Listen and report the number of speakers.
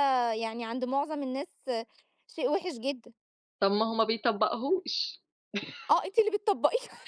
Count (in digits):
2